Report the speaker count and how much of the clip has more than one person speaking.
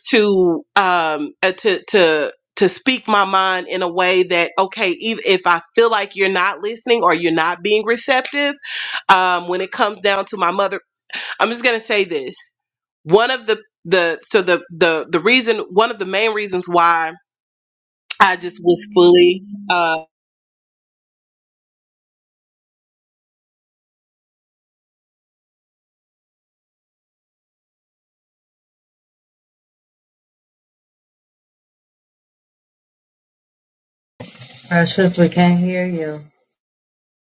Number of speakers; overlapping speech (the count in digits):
2, no overlap